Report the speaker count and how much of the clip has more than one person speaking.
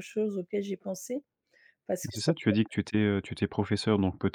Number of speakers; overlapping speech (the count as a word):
two, about 12%